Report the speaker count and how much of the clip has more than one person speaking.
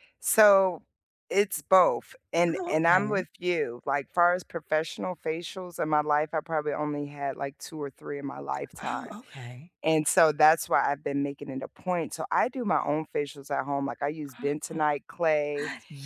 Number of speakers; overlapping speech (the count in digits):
2, about 7%